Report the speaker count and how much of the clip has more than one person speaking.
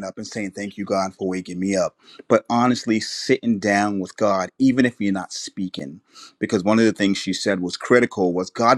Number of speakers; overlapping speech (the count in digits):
1, no overlap